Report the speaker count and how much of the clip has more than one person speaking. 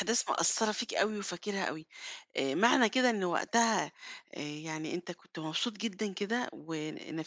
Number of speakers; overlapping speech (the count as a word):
one, no overlap